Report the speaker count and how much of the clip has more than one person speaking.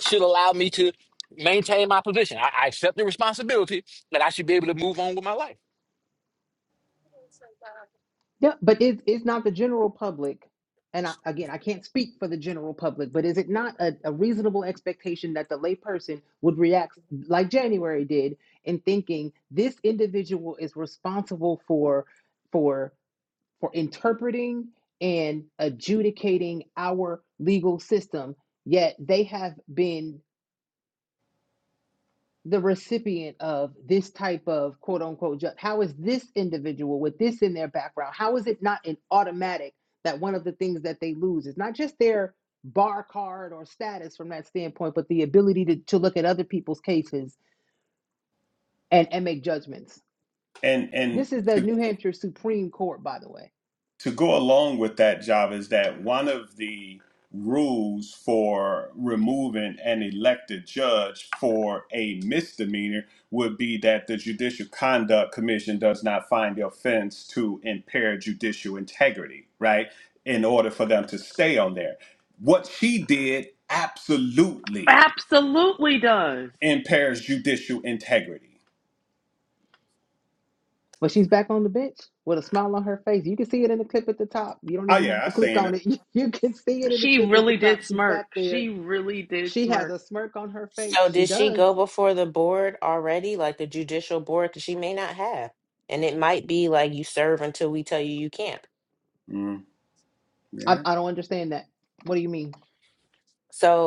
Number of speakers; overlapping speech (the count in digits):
5, about 4%